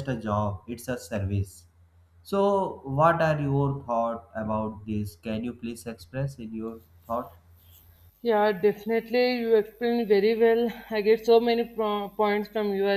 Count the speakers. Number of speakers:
two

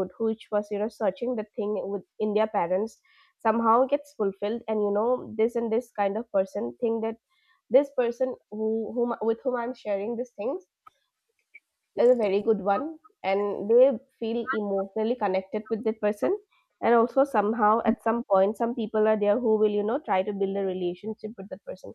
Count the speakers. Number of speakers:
one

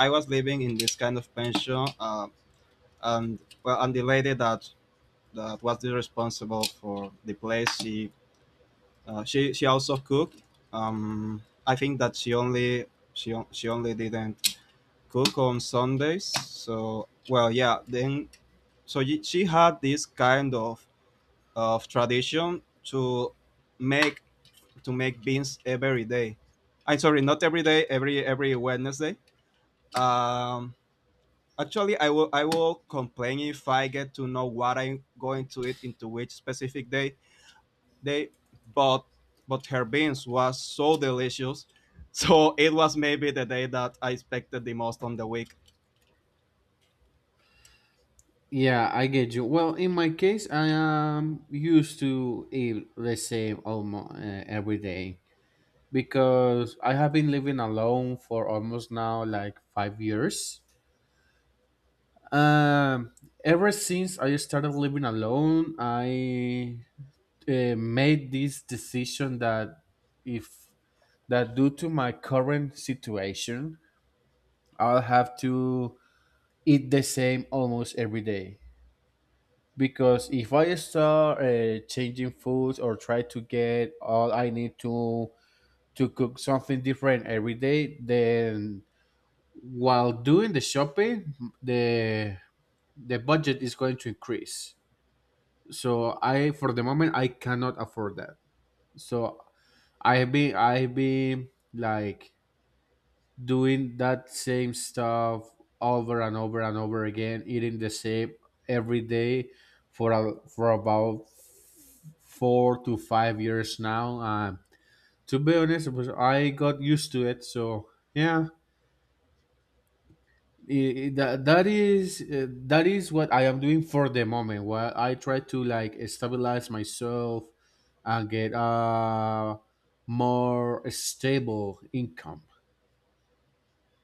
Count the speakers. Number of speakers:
two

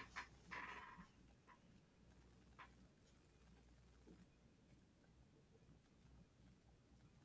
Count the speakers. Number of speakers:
zero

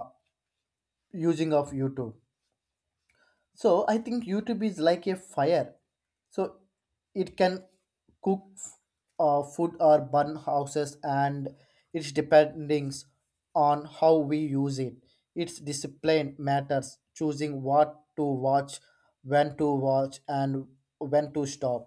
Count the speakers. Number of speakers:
one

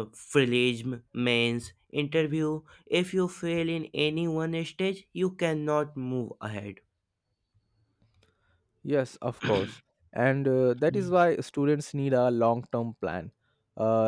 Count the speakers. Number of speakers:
two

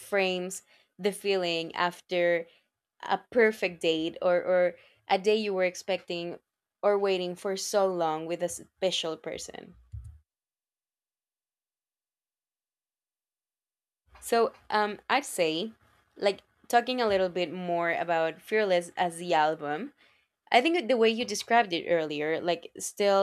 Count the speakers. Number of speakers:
one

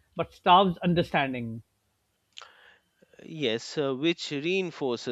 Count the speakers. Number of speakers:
two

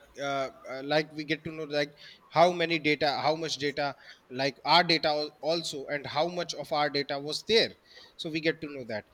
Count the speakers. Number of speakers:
one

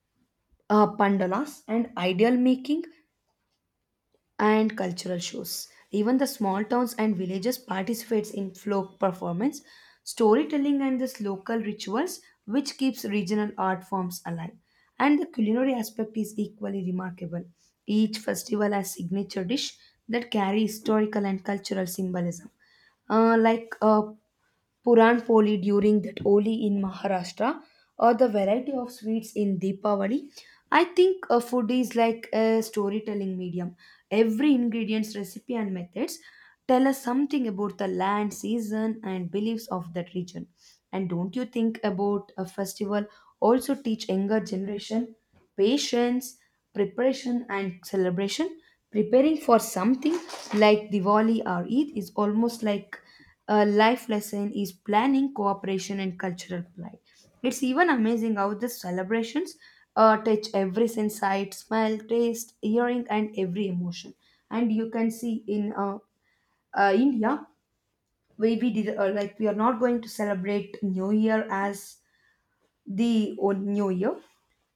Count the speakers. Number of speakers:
one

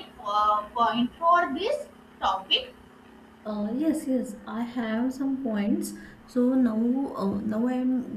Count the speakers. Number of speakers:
two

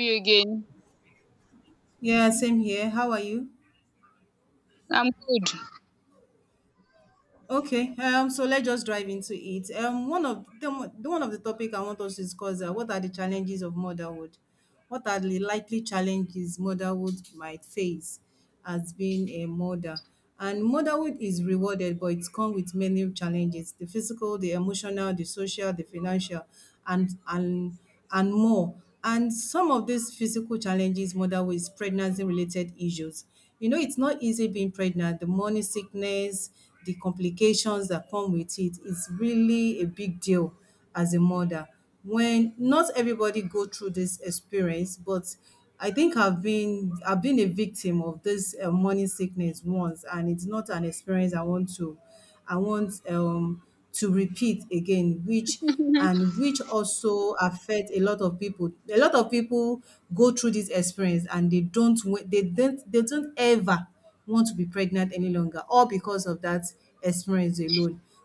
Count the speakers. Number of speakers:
two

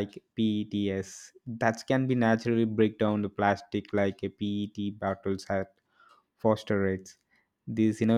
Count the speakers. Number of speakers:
one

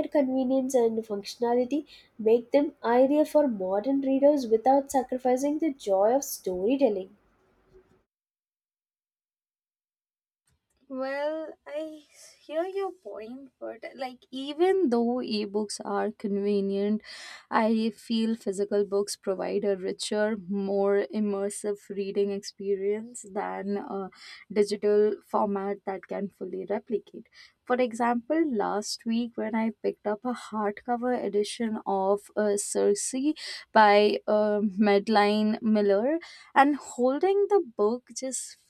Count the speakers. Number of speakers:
two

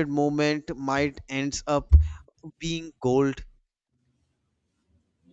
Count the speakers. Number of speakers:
one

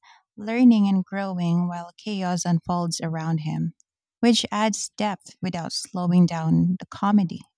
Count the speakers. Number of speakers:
one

